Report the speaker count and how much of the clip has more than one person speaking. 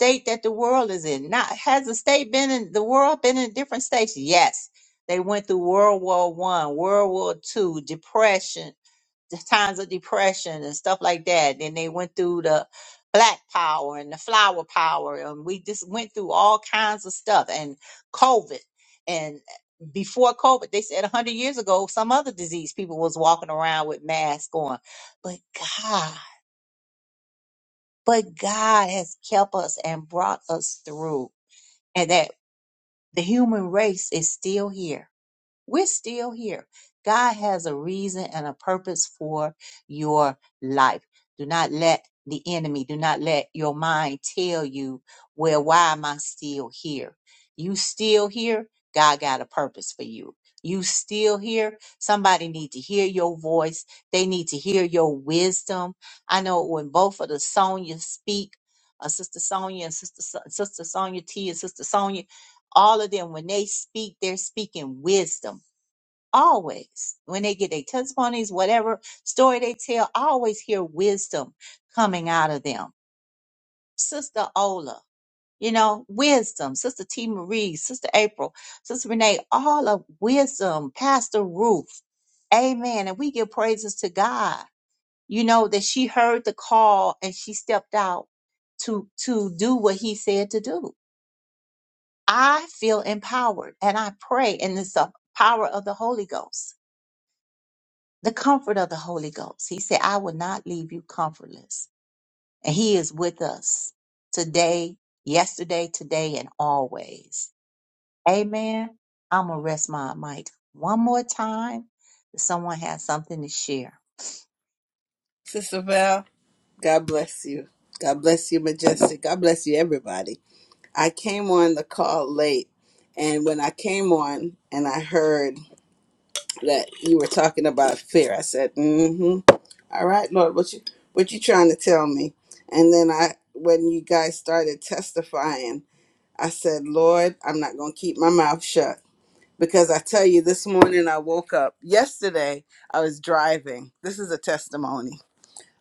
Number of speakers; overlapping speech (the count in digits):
2, no overlap